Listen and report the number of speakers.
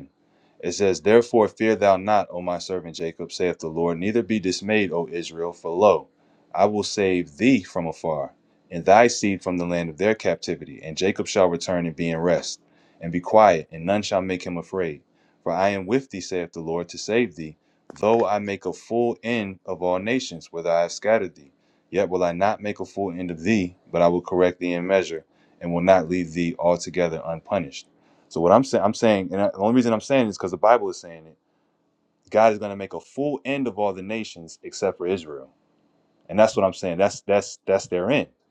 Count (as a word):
one